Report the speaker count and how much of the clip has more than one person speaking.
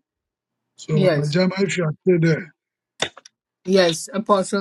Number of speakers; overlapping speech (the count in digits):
2, about 7%